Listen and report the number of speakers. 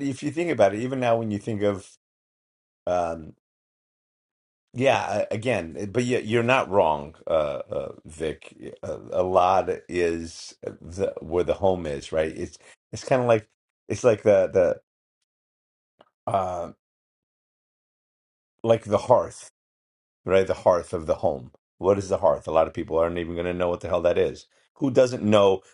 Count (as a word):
one